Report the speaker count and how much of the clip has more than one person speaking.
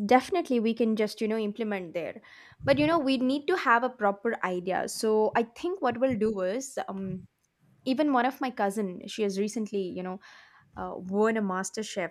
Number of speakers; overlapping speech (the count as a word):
one, no overlap